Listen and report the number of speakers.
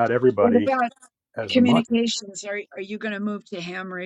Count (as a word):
two